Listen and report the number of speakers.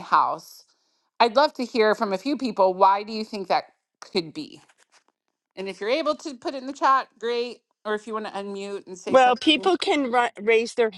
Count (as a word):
two